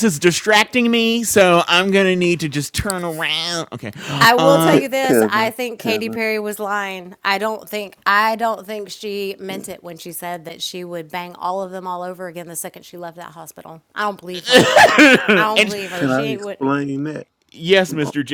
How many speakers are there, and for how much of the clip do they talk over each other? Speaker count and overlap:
3, about 17%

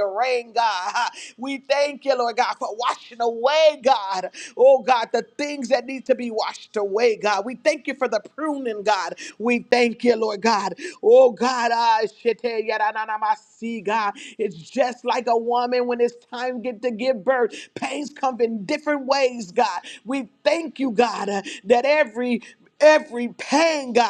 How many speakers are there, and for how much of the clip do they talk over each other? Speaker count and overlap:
1, no overlap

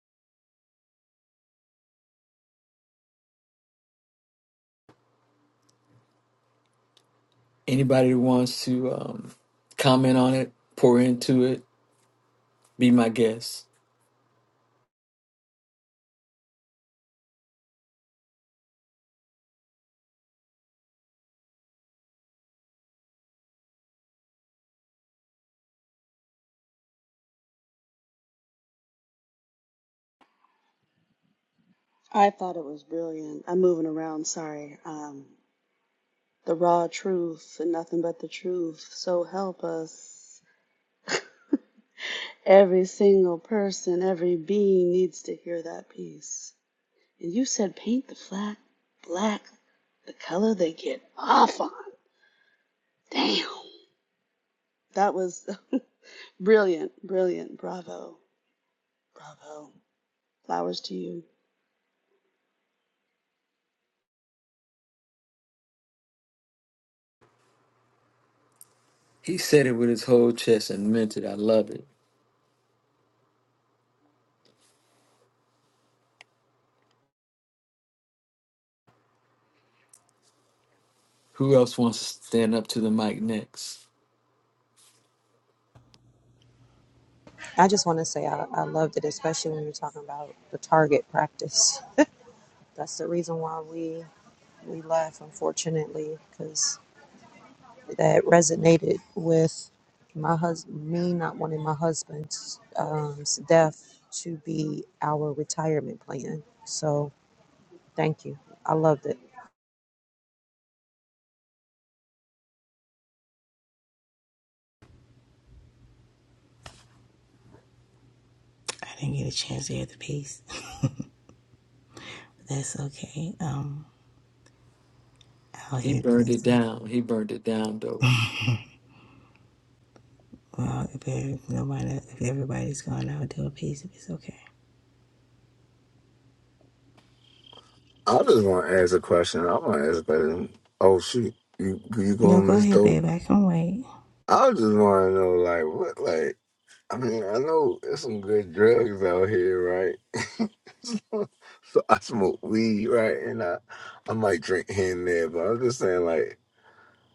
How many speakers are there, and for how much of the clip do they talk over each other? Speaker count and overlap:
5, about 1%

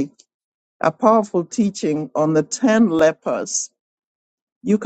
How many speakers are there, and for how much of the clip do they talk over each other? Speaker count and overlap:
1, no overlap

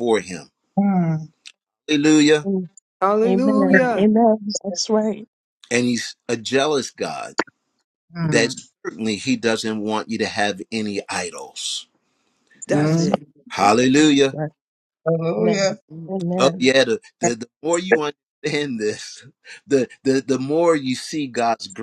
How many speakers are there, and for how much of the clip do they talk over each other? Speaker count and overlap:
4, about 12%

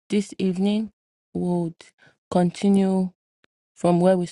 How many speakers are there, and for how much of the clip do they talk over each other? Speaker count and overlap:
1, no overlap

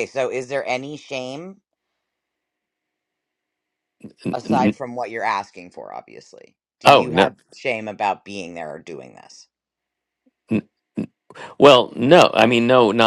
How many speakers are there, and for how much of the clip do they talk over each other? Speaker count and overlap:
2, about 7%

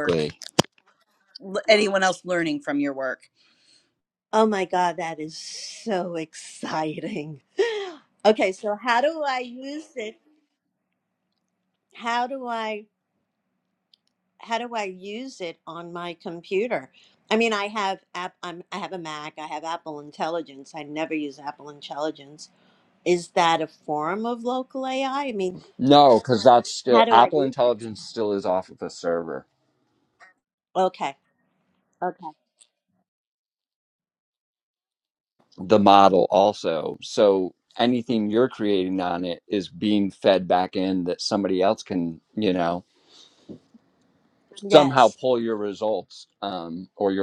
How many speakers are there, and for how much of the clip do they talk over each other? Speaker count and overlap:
3, about 3%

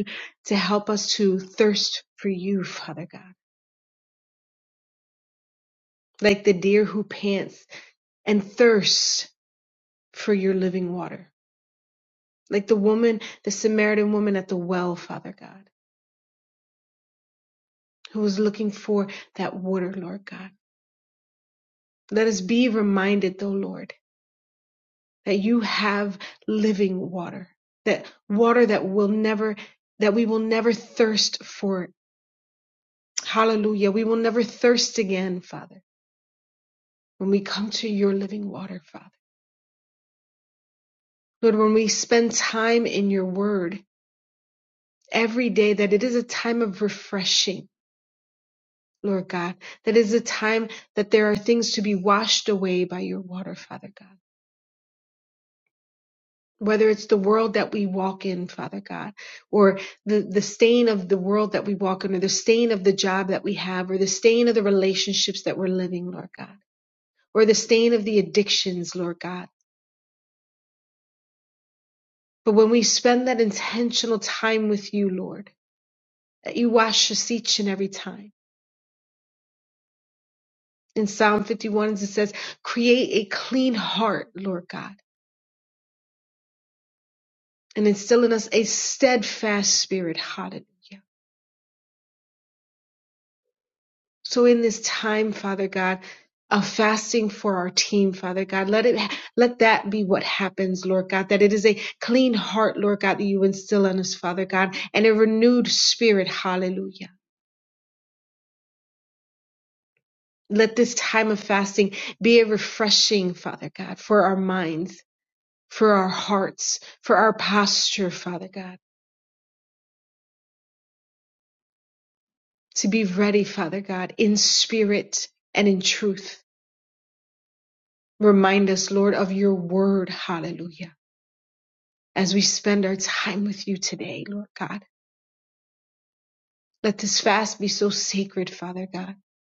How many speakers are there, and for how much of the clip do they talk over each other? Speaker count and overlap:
1, no overlap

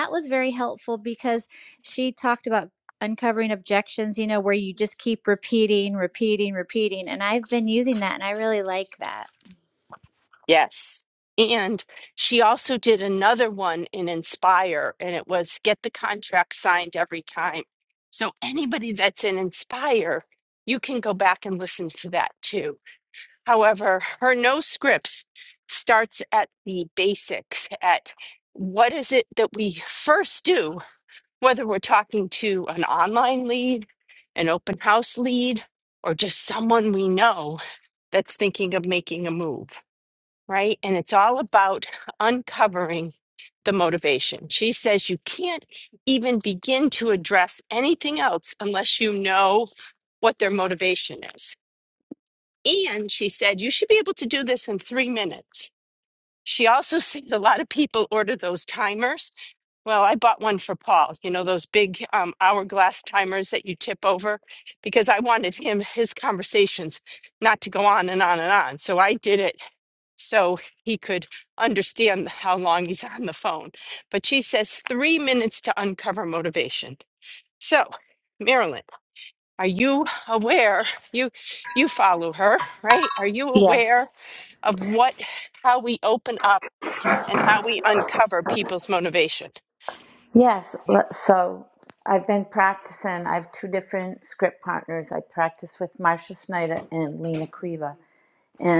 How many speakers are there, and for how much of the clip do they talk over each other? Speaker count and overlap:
3, about 1%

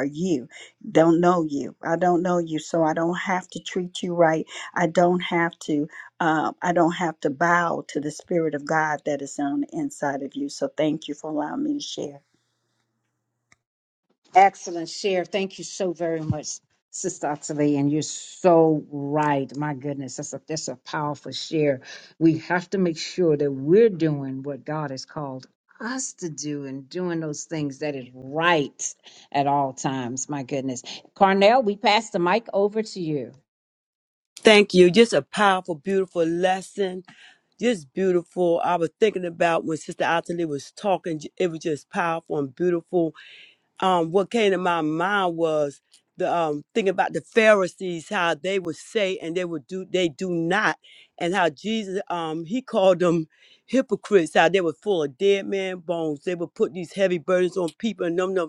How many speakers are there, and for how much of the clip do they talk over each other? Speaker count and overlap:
3, no overlap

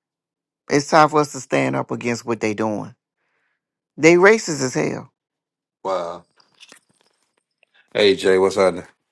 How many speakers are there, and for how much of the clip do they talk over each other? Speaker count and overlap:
2, no overlap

